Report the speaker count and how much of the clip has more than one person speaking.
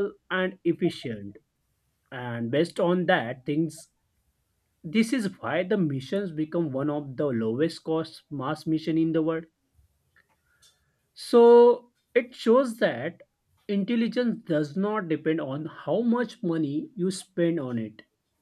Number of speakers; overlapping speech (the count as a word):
one, no overlap